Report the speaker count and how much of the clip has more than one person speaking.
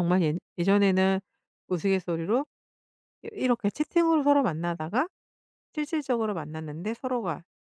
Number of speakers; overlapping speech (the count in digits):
1, no overlap